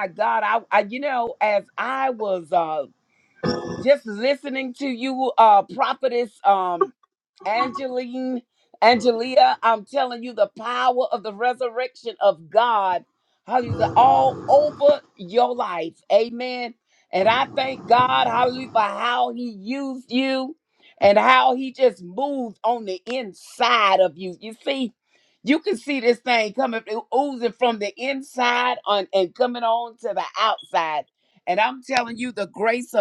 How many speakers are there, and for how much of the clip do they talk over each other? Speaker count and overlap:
1, no overlap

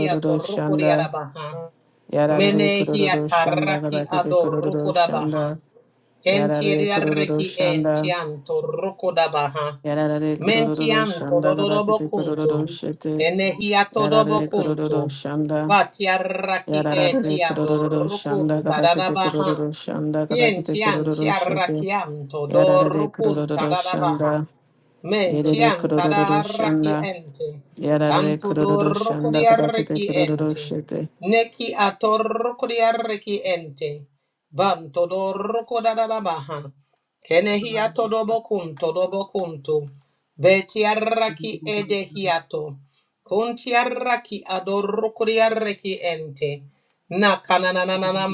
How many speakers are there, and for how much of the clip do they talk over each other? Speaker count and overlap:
2, about 39%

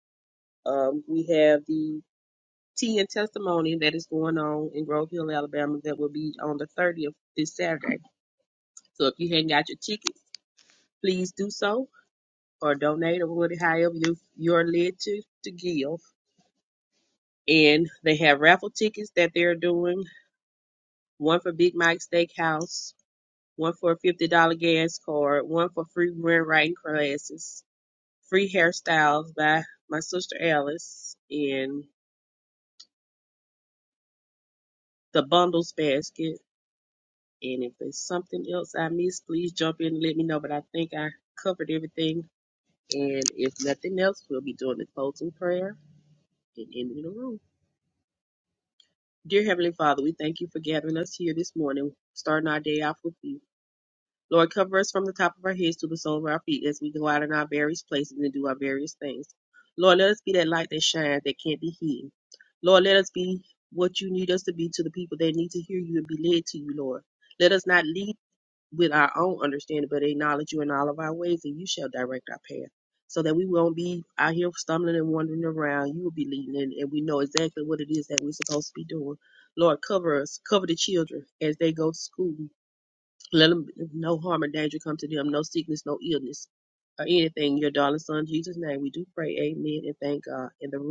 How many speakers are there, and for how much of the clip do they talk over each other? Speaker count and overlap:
1, no overlap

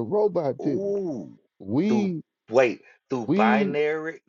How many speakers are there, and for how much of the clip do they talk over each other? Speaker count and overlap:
2, about 21%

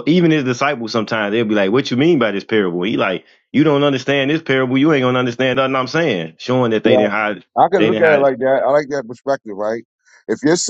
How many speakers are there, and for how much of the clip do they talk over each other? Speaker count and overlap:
2, about 7%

